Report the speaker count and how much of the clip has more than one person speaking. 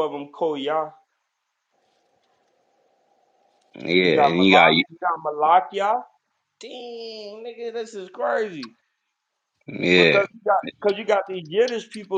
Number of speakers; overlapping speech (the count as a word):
two, about 8%